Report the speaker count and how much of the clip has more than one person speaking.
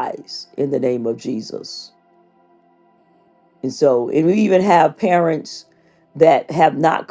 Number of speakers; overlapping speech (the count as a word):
one, no overlap